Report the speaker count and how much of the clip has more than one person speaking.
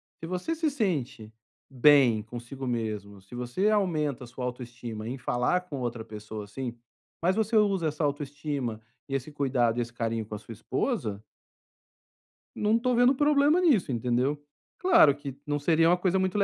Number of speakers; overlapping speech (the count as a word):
one, no overlap